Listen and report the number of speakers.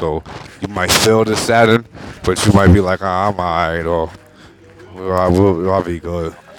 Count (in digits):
1